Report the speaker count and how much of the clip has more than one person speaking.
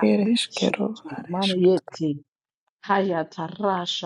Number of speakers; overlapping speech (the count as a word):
two, about 34%